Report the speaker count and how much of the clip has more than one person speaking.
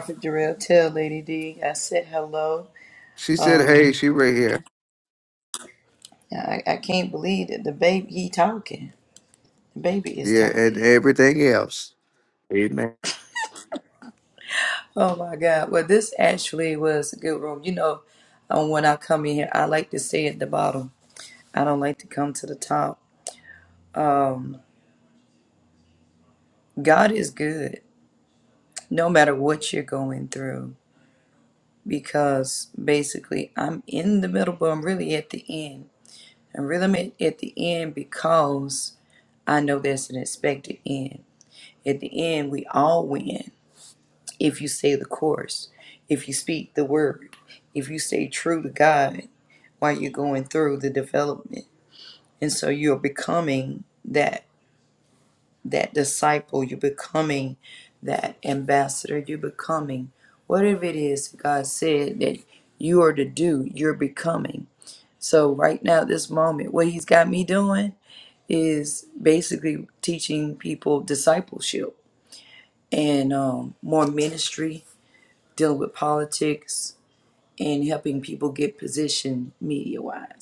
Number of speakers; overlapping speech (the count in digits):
2, about 2%